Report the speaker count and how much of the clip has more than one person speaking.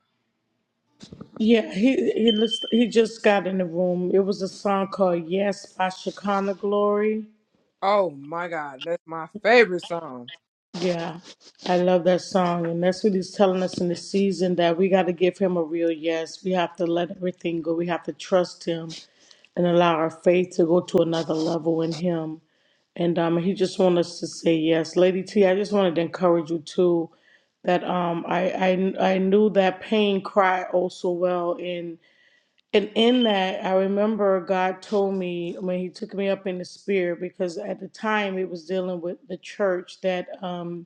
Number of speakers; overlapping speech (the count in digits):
2, no overlap